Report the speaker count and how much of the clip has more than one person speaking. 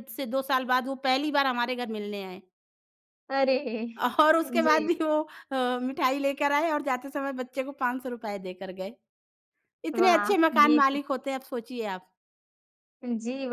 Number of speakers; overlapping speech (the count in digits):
2, about 12%